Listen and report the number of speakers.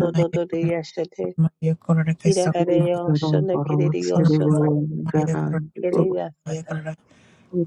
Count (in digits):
3